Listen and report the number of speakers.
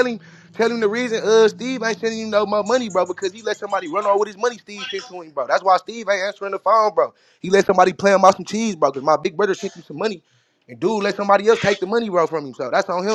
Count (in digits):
1